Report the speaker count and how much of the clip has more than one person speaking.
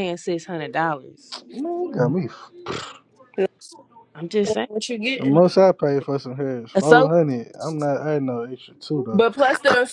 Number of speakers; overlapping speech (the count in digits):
3, about 7%